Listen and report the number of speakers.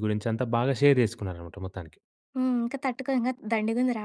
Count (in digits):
2